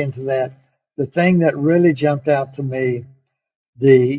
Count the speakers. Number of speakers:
1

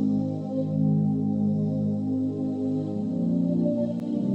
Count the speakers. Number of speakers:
0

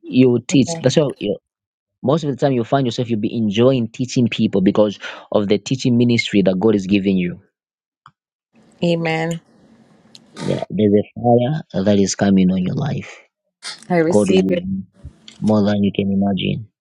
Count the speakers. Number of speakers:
2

